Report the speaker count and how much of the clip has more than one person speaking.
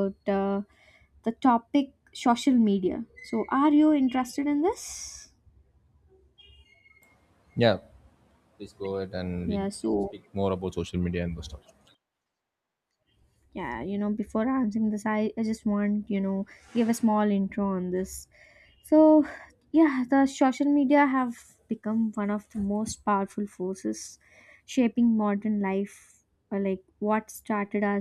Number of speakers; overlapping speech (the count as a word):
two, about 1%